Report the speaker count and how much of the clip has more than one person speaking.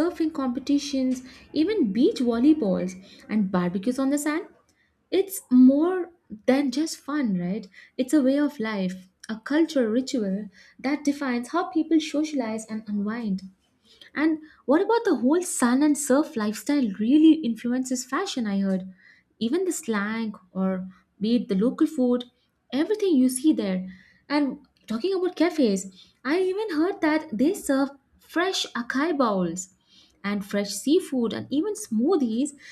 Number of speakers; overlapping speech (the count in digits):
1, no overlap